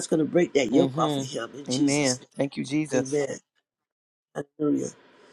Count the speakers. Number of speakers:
2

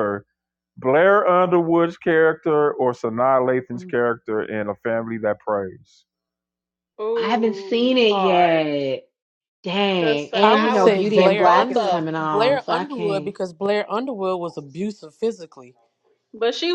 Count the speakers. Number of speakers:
4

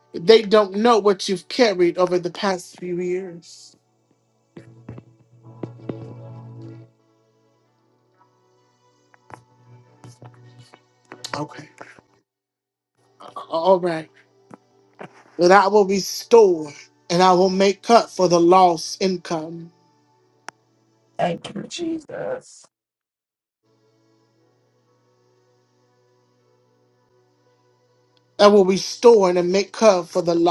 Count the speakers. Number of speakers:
2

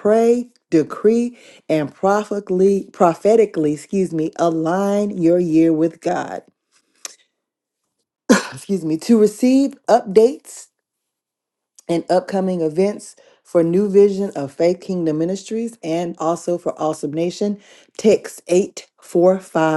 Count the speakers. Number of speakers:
1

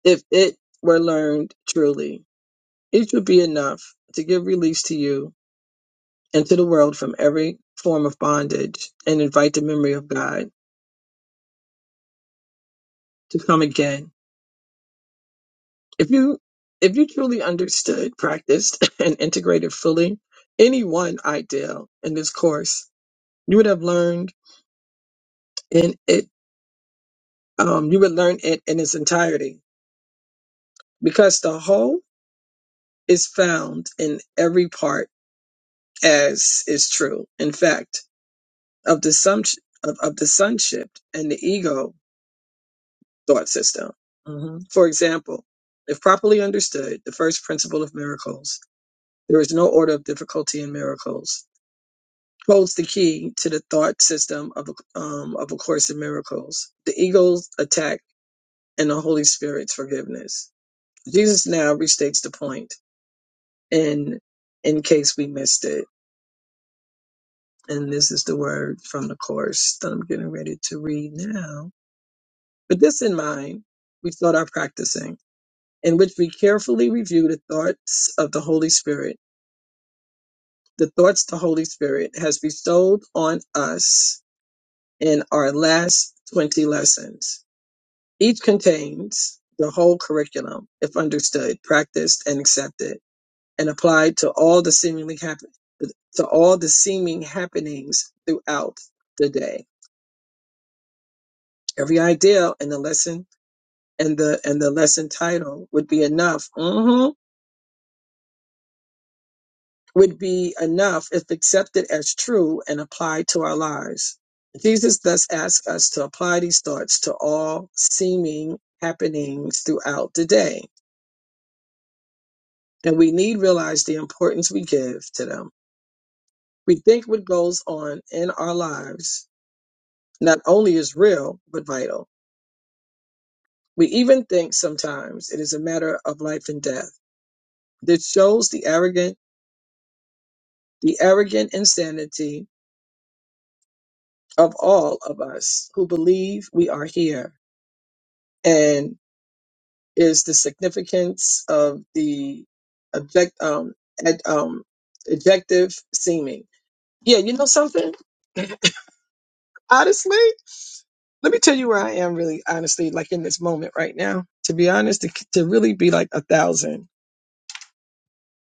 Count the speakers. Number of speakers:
1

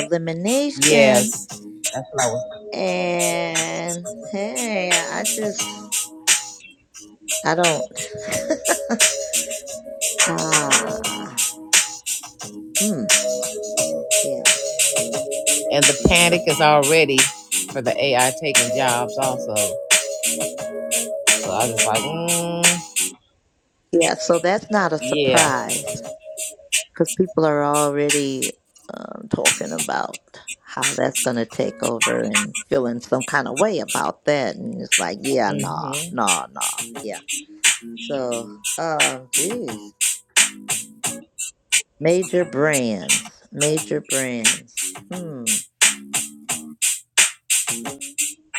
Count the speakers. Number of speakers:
2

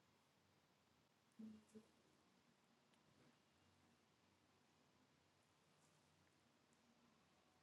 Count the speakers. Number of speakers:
0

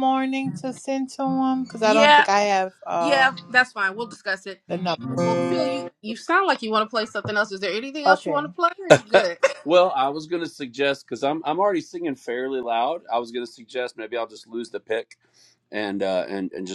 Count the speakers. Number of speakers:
3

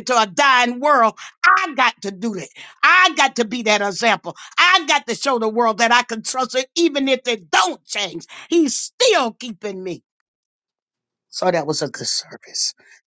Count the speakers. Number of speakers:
1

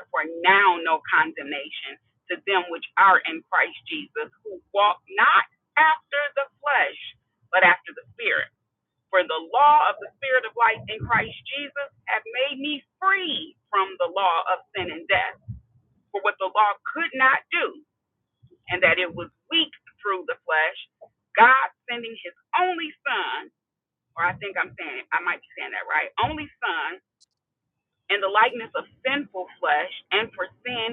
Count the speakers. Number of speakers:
1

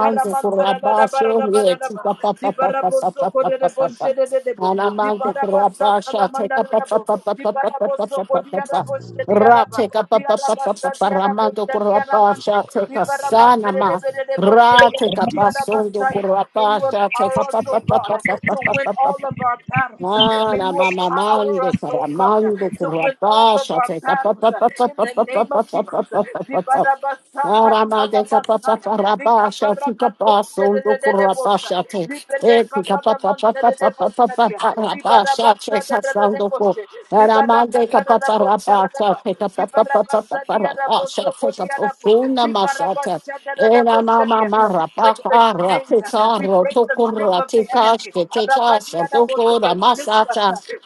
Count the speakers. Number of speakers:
2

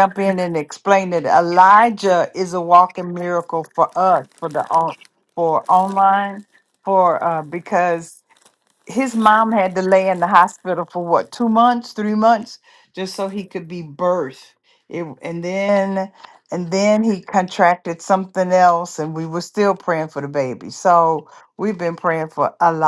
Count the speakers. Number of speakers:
1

